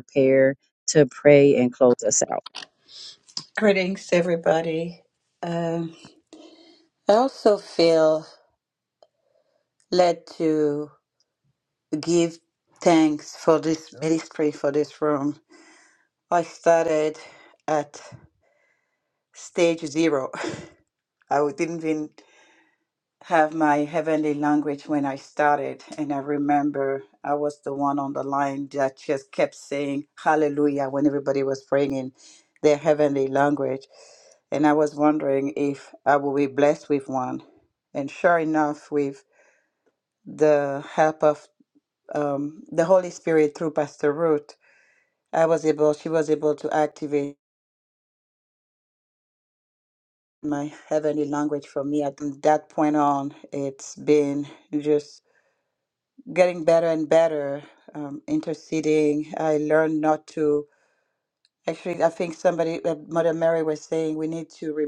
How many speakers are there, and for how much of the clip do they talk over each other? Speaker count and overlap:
two, no overlap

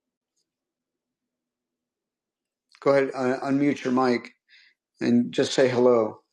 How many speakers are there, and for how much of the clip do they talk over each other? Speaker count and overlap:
one, no overlap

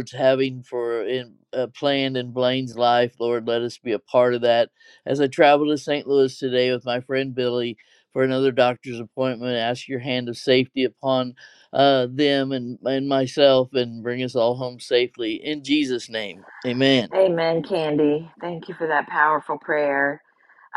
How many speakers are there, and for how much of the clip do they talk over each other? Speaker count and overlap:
two, no overlap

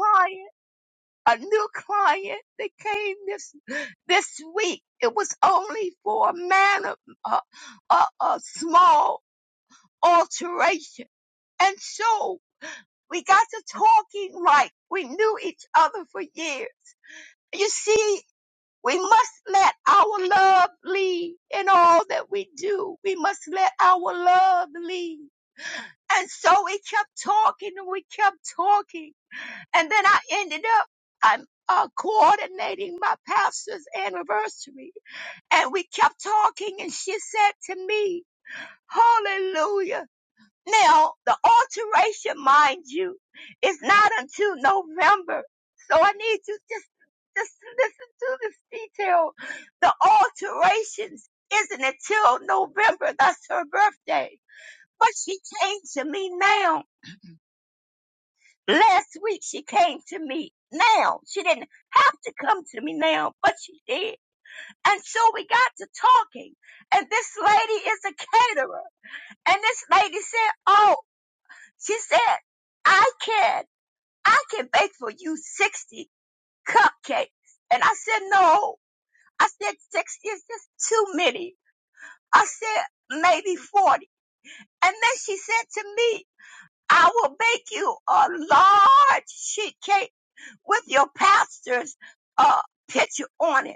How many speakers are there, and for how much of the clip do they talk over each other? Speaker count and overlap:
one, no overlap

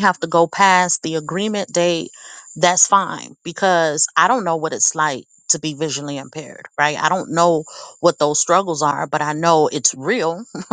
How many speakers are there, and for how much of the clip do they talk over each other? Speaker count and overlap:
one, no overlap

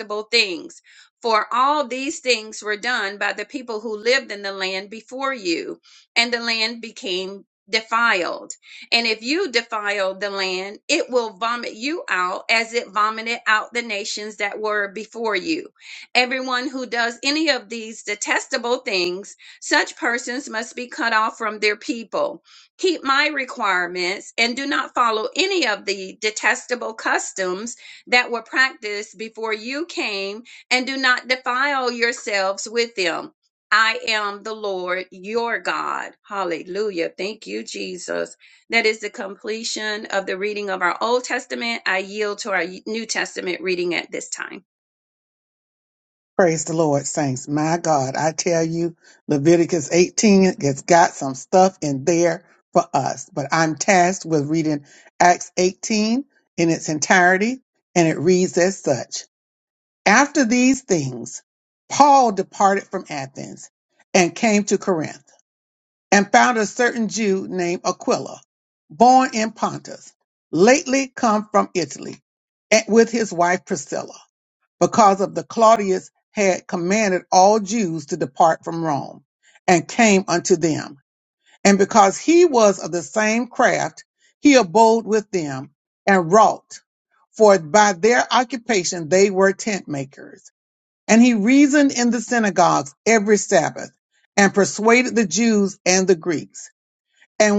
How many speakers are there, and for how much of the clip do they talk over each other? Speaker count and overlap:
two, no overlap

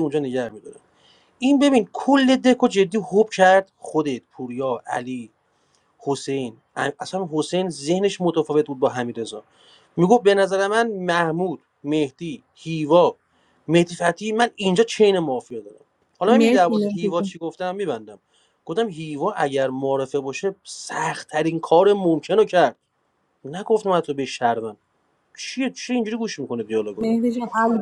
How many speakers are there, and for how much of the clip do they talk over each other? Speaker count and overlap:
two, about 4%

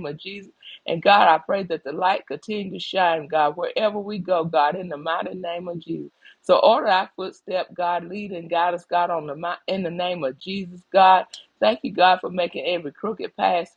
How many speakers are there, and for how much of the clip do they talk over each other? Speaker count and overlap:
one, no overlap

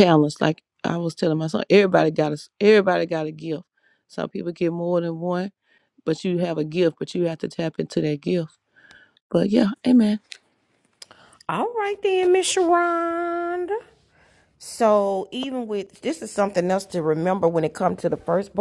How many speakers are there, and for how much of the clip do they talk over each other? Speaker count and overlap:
two, no overlap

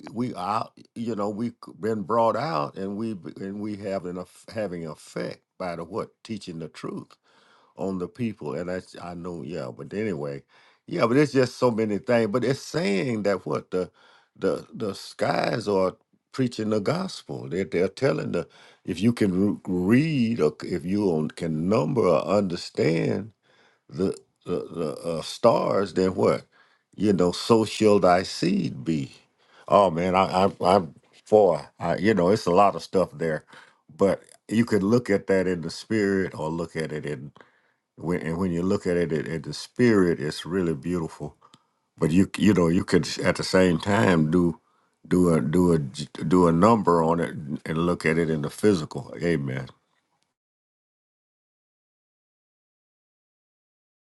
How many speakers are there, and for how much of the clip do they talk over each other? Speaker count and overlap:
one, no overlap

